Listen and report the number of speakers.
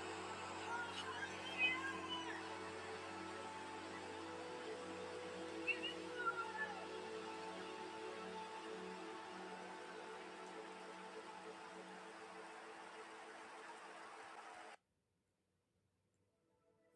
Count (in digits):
0